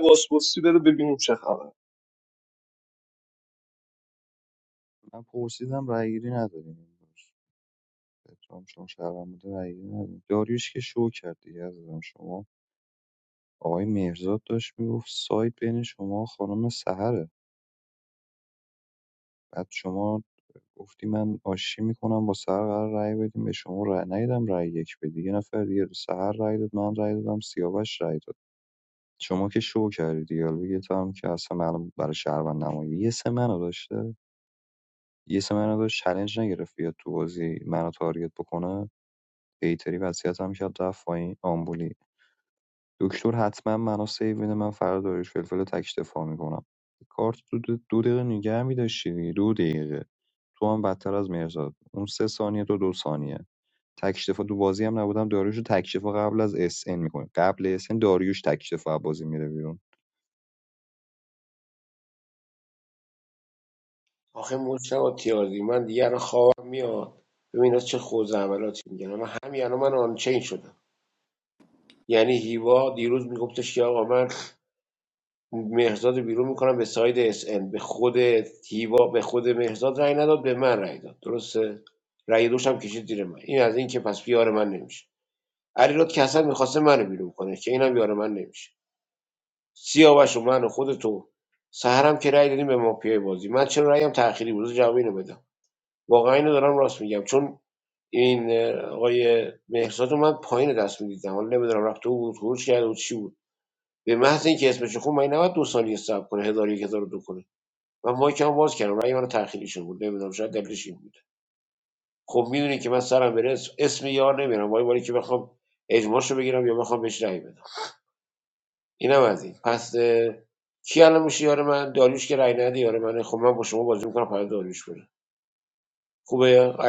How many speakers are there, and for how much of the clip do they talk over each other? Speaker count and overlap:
3, no overlap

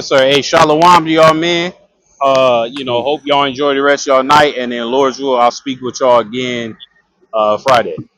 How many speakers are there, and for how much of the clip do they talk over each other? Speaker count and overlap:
1, no overlap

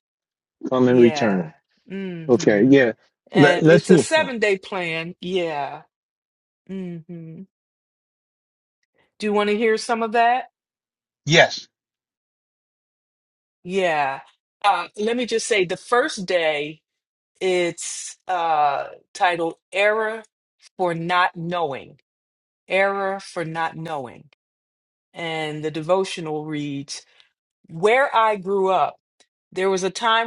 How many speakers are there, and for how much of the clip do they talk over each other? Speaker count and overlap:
2, about 7%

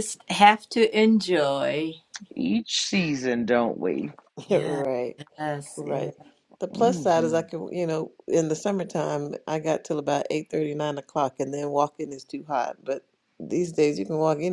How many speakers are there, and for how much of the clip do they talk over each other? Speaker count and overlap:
3, about 7%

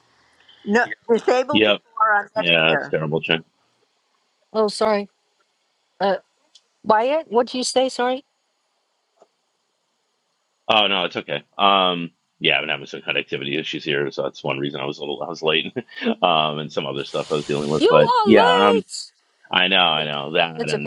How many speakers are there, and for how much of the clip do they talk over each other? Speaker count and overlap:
3, about 9%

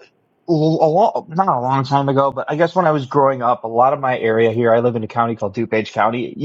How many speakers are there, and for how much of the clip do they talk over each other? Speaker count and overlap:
1, no overlap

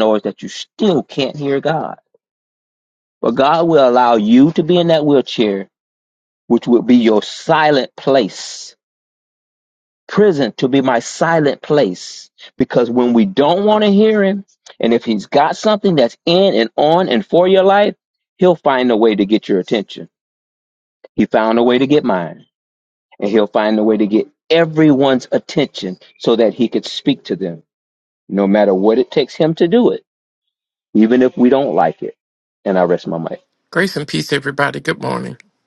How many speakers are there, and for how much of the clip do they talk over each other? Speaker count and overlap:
2, no overlap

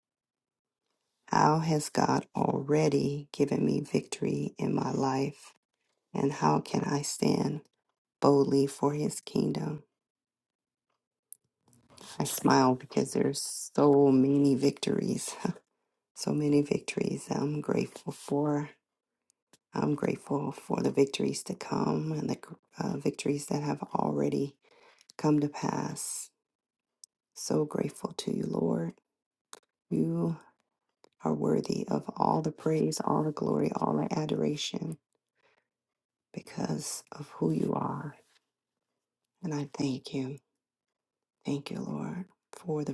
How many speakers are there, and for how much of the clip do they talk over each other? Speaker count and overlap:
1, no overlap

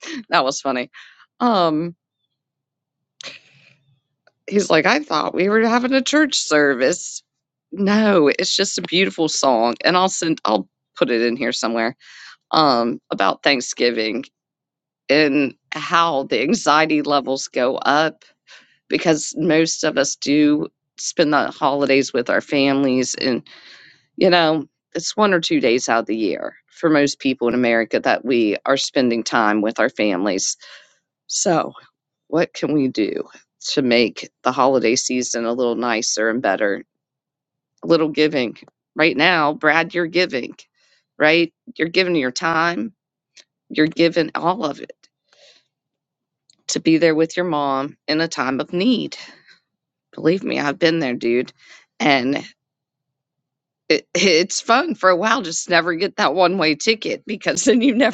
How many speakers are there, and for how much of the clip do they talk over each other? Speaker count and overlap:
1, no overlap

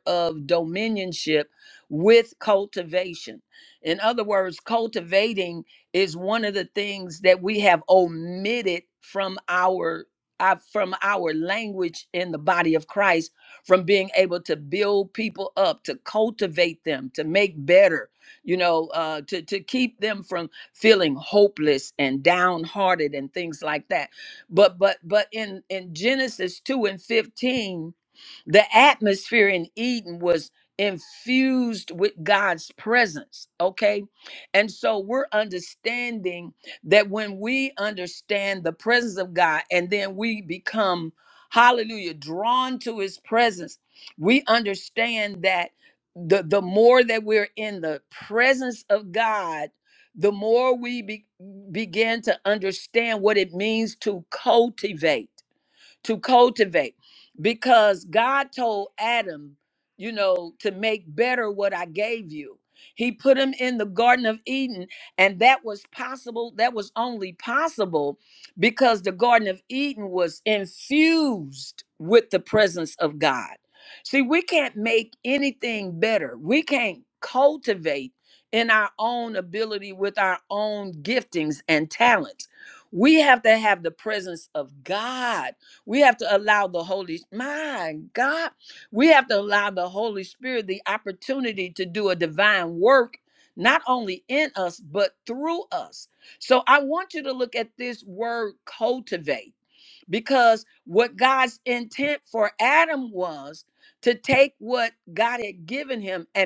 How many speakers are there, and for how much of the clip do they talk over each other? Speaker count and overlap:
1, no overlap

